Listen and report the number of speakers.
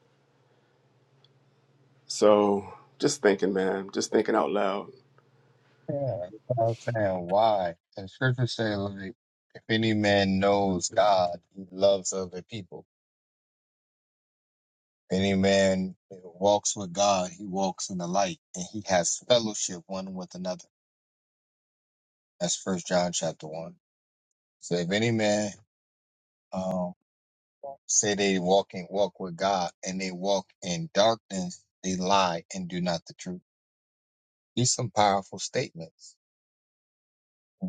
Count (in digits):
2